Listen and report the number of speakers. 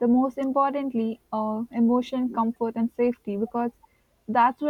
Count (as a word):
one